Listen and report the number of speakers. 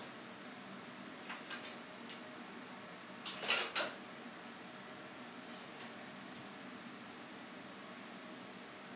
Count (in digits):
0